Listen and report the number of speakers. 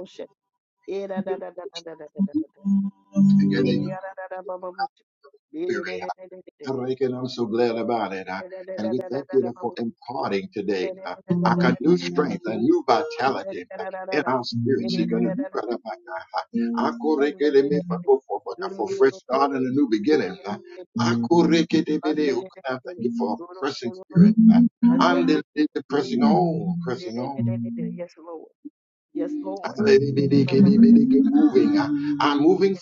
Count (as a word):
two